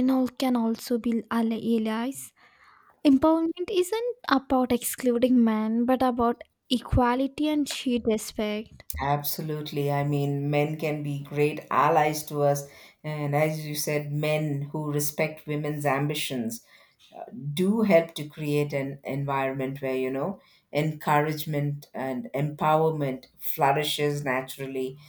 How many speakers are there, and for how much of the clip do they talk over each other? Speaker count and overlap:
2, no overlap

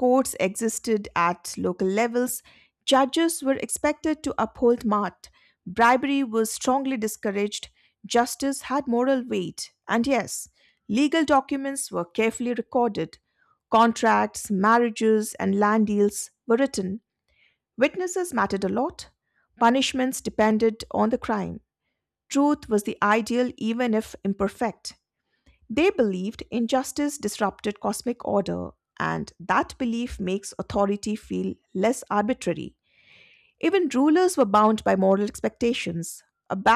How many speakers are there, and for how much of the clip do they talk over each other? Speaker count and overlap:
1, no overlap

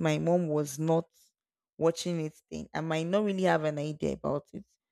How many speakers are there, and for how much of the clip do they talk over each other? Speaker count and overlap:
1, no overlap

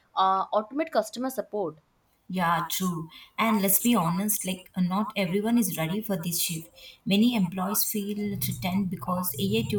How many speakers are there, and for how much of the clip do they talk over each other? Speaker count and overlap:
2, no overlap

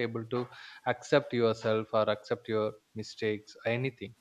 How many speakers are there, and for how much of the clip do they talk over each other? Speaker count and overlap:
1, no overlap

